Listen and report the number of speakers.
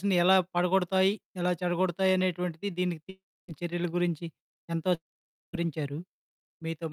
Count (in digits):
1